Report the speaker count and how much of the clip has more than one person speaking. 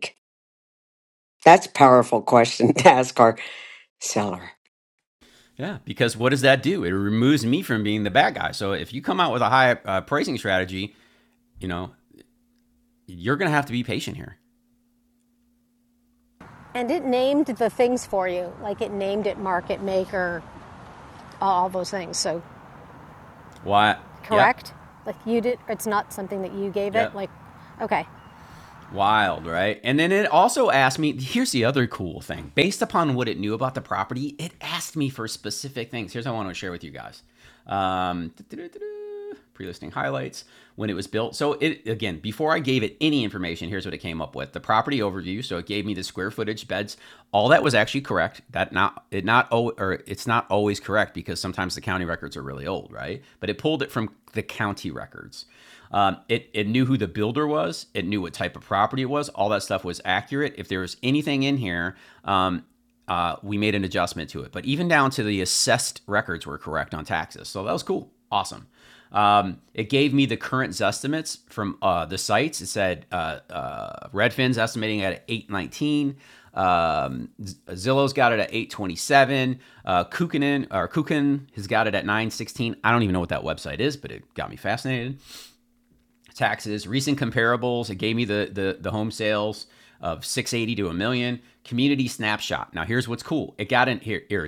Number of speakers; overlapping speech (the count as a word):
three, about 1%